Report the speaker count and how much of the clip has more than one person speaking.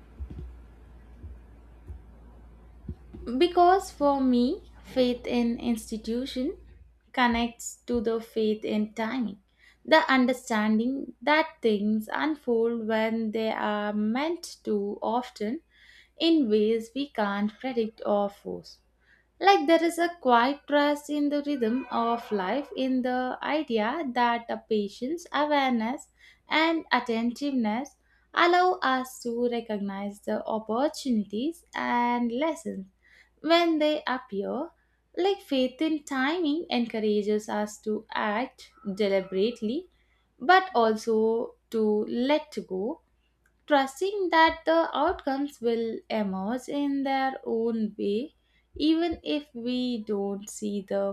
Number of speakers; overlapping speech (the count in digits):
1, no overlap